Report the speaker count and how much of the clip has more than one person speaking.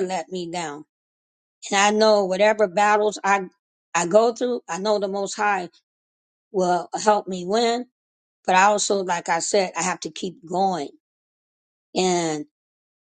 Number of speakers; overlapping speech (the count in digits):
1, no overlap